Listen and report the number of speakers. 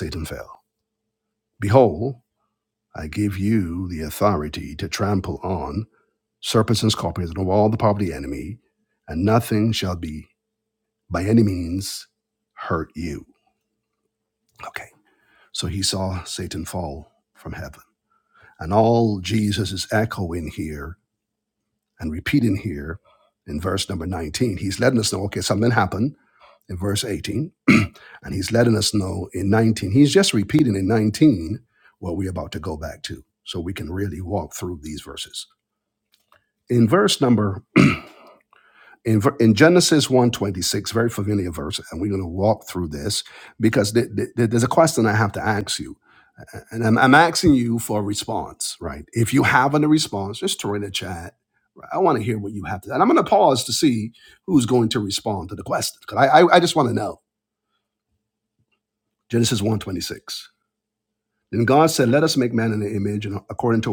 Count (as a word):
one